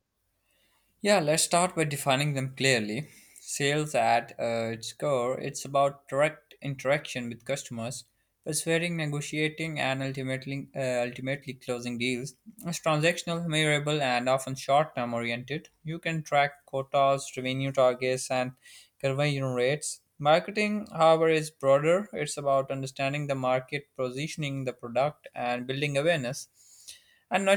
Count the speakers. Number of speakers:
one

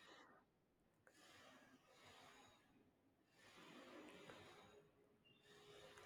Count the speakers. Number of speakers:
zero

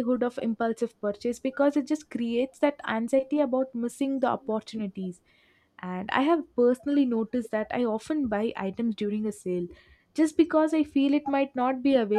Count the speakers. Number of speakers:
one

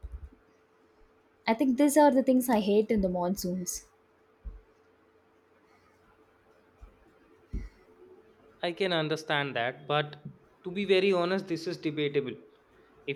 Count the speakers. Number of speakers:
two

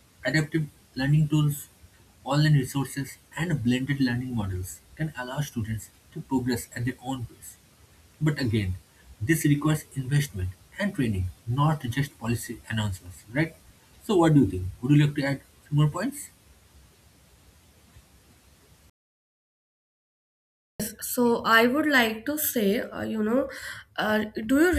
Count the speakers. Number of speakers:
two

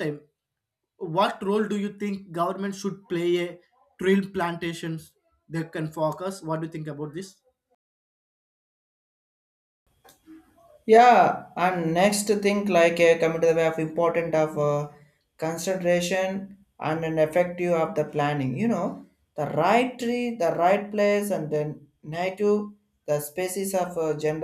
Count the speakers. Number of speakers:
two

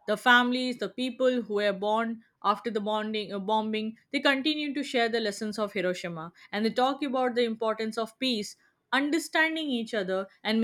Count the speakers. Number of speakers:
one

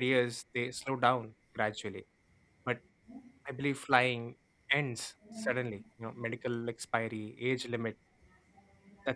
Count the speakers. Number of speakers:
one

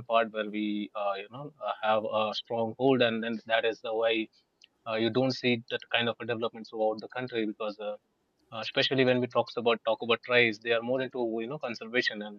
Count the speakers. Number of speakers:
one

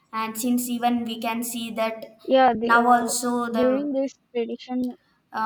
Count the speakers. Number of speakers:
two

